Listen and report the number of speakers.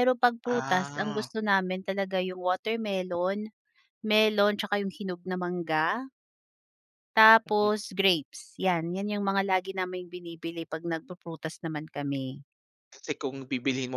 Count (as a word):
two